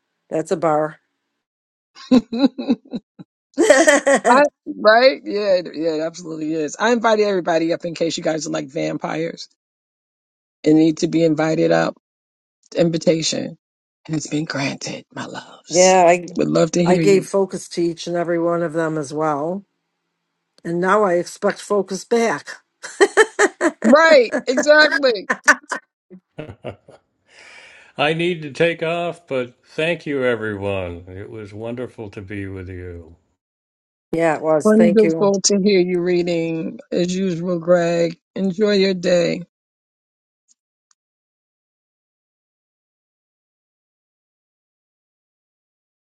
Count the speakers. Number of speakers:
three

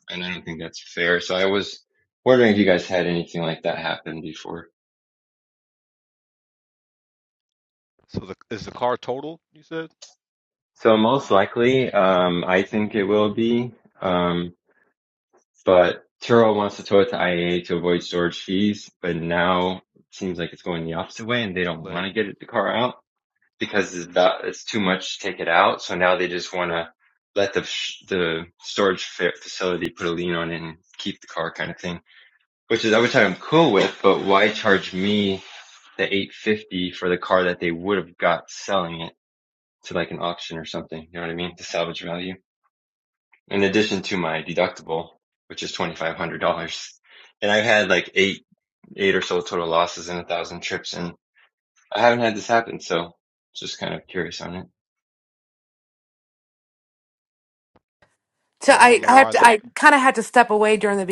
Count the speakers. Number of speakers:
three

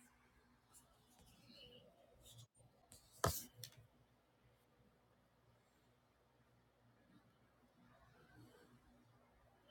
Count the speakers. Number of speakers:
zero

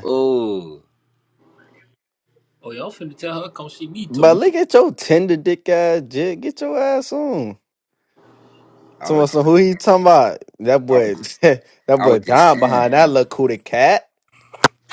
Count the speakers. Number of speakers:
three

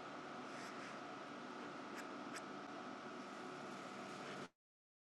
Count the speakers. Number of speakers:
zero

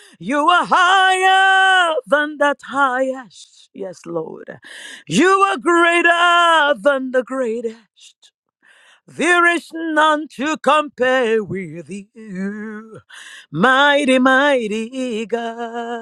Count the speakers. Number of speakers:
one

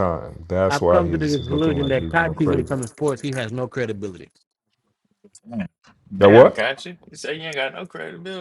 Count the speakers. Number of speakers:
three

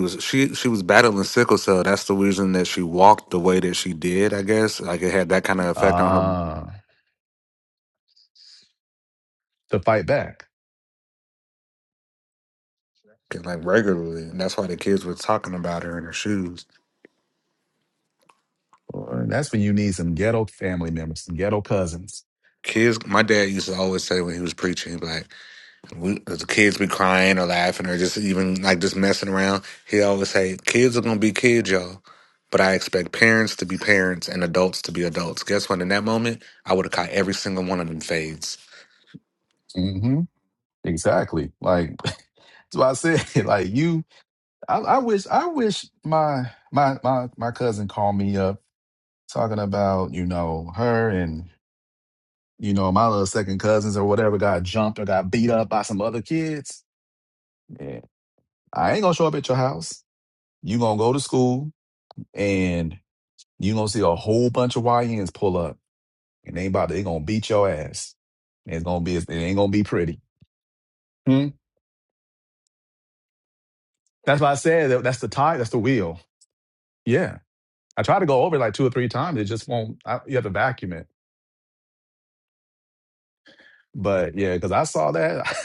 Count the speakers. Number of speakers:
two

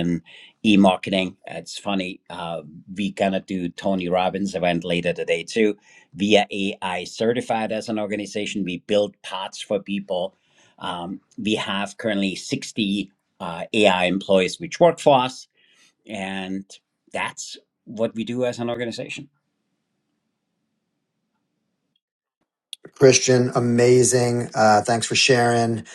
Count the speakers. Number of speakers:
two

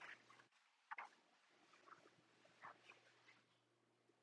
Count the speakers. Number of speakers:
zero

